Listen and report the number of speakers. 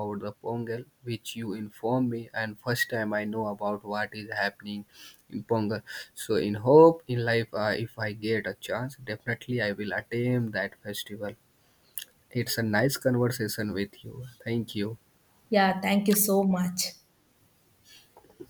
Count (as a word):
two